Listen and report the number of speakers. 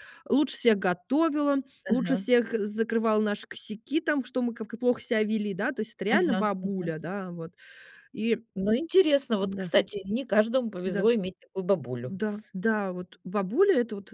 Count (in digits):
2